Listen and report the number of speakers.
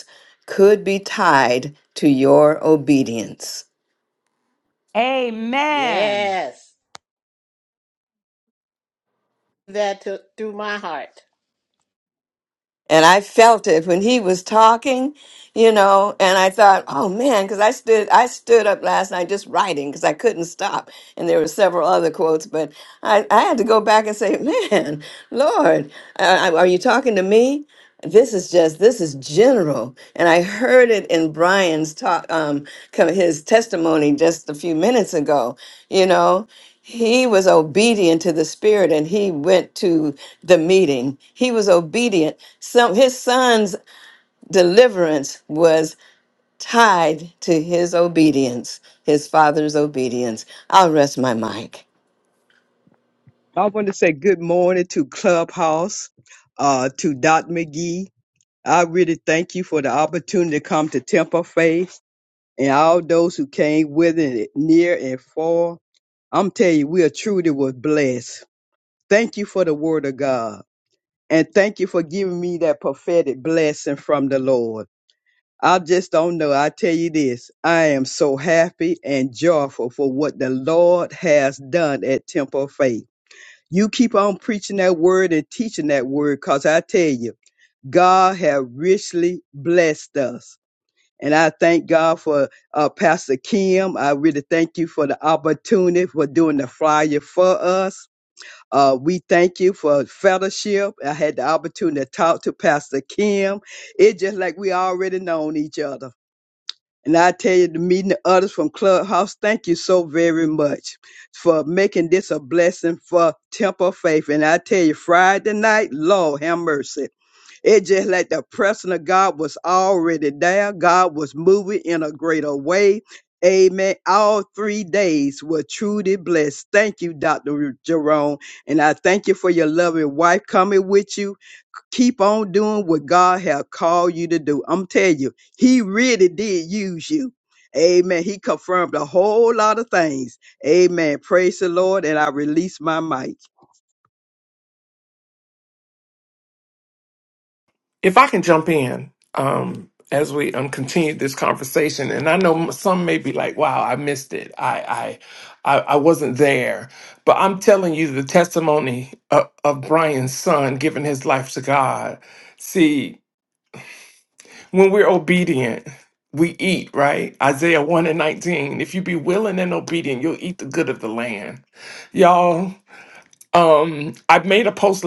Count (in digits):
5